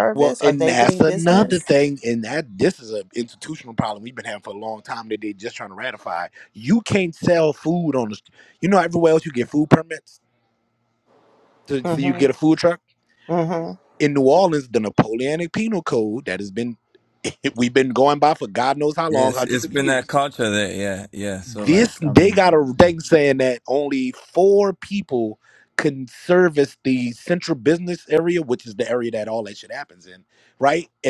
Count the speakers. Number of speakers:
3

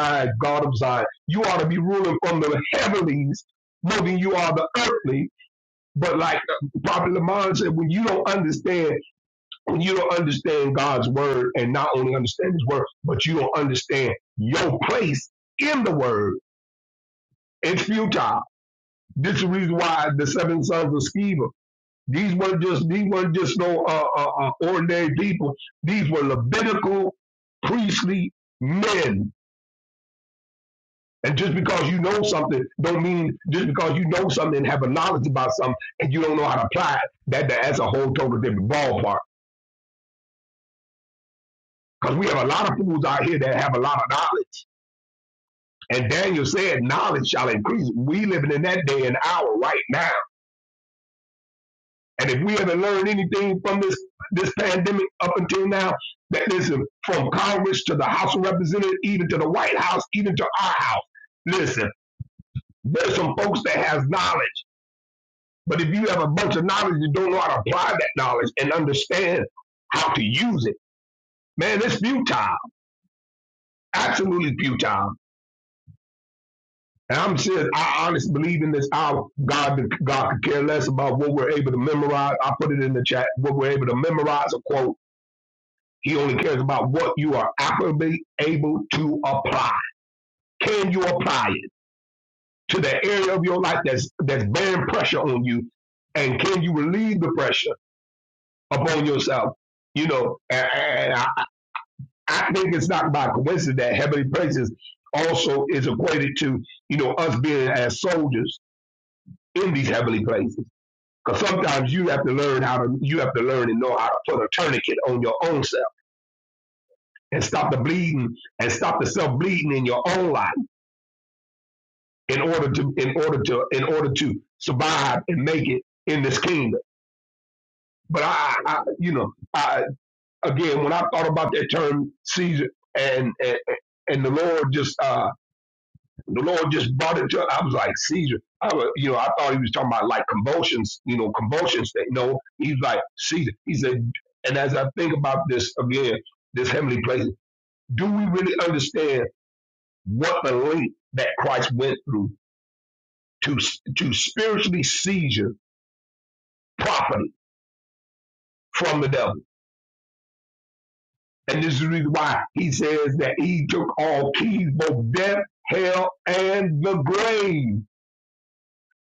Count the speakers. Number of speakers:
1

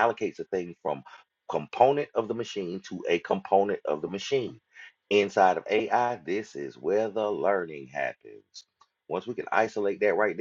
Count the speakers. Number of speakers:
1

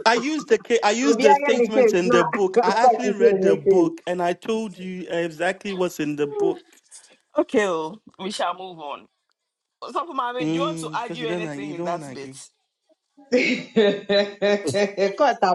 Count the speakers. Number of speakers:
3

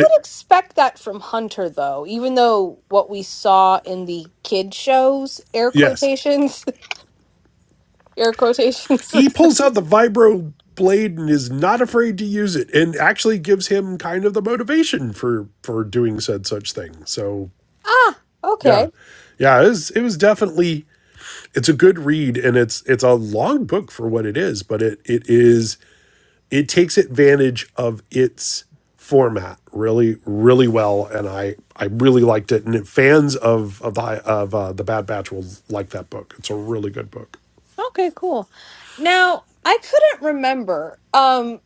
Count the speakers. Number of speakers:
2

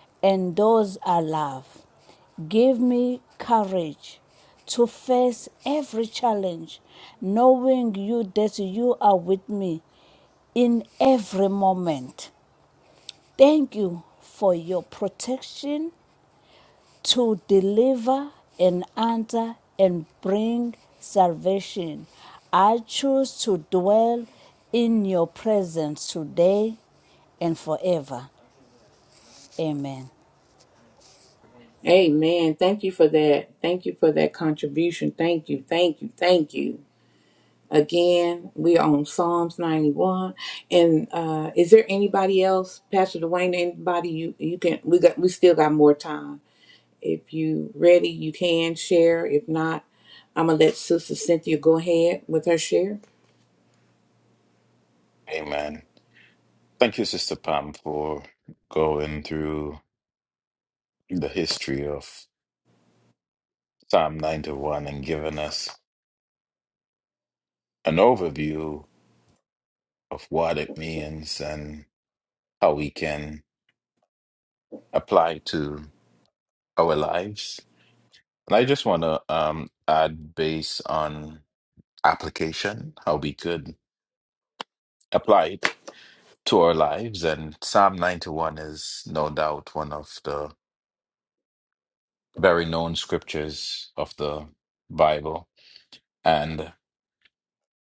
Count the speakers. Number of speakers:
3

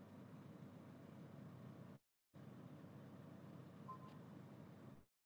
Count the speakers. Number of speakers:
0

